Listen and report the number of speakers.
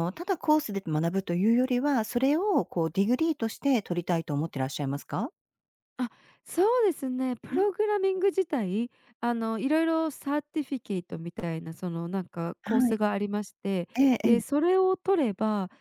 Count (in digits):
2